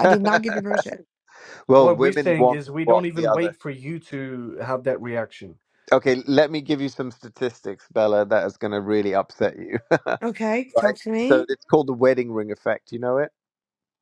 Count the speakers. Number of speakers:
three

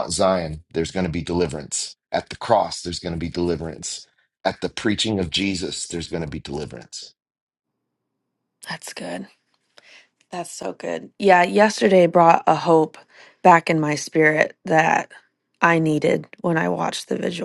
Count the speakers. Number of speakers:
two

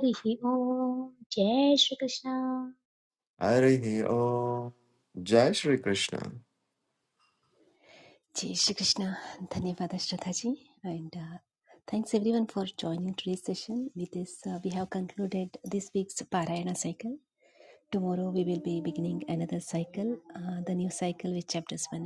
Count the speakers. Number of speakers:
three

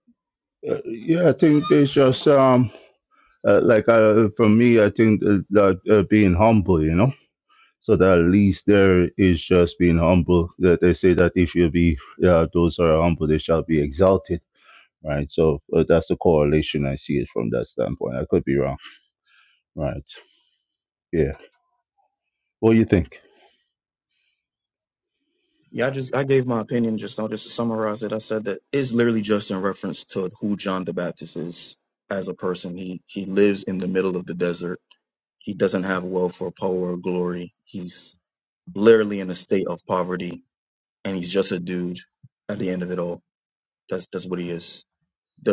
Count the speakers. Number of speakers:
two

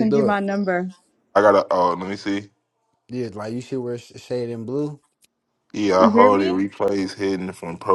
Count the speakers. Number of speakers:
three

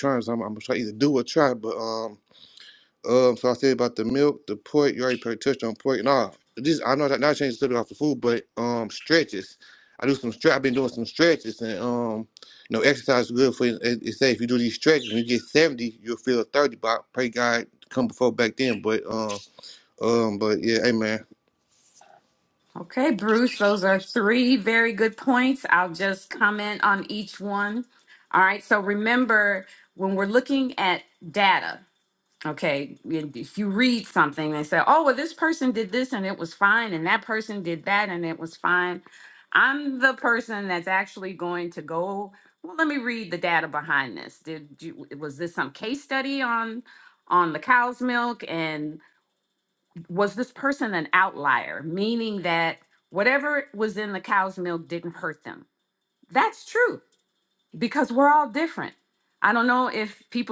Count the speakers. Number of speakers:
two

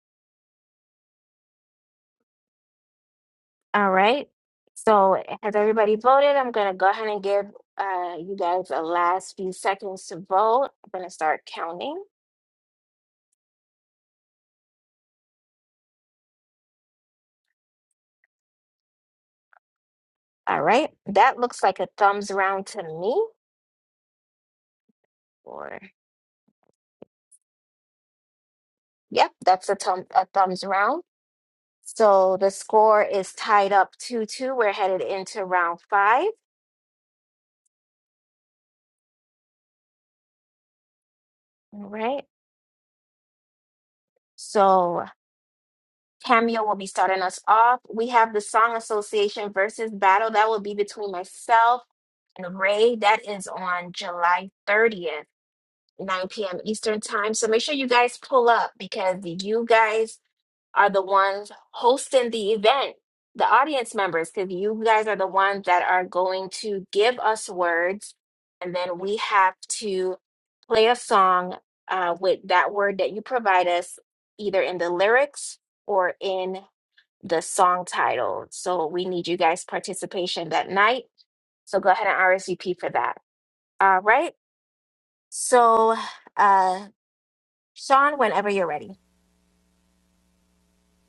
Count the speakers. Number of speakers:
one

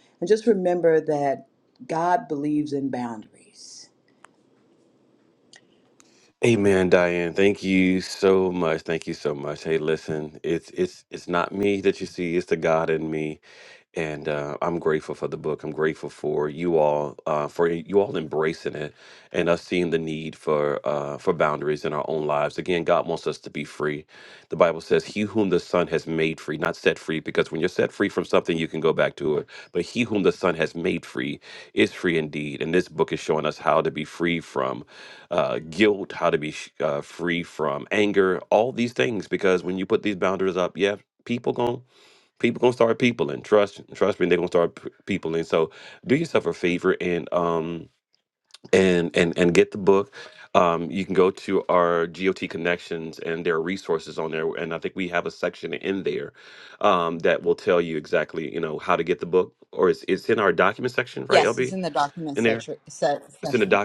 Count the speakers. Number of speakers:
three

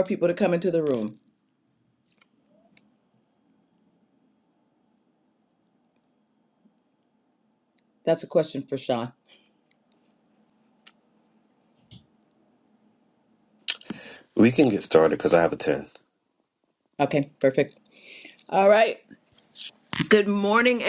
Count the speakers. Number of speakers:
two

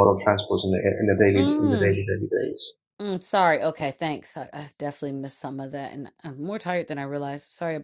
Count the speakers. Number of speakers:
two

